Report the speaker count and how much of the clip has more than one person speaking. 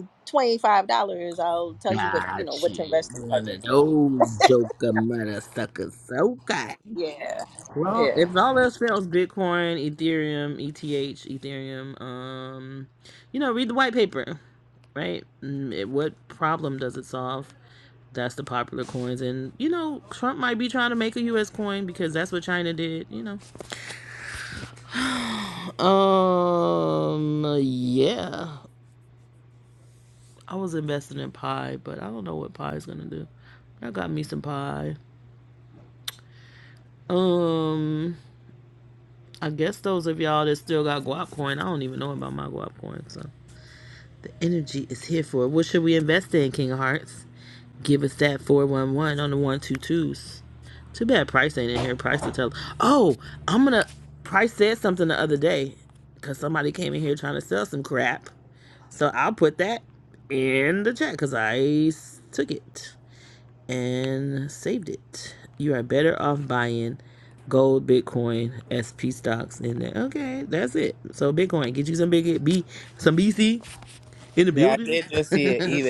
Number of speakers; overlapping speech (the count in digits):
3, about 4%